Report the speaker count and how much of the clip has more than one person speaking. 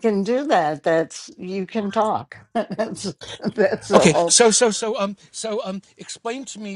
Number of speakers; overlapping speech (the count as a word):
two, about 6%